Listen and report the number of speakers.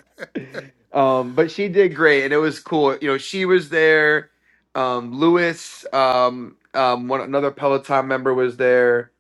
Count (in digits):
1